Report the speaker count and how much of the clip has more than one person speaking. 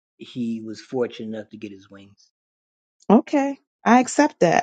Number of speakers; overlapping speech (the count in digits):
2, no overlap